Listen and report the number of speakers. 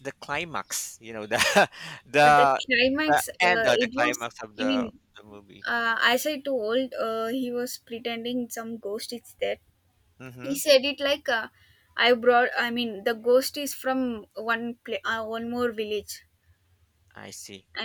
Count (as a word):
two